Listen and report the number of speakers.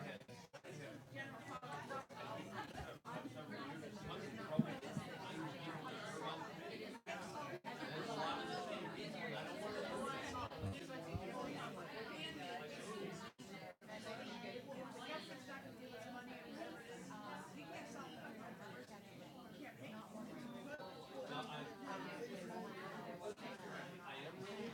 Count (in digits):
0